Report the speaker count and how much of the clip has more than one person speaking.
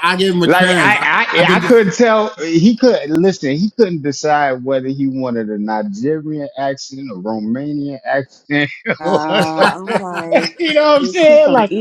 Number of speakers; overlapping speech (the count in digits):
3, about 19%